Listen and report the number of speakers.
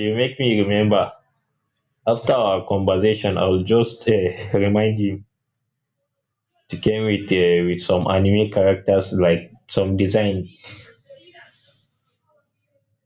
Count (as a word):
one